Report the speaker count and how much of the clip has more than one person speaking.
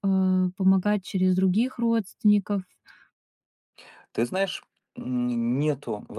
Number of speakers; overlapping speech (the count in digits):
2, no overlap